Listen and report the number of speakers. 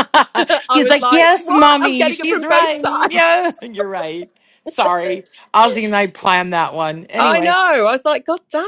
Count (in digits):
2